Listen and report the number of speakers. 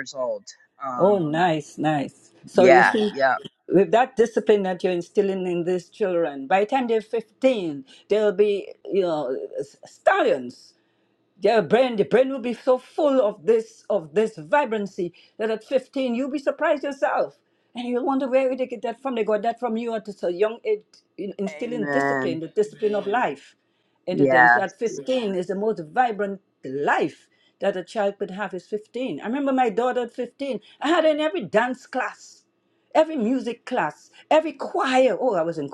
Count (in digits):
2